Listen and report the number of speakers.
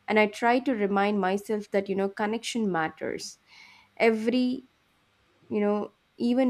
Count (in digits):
1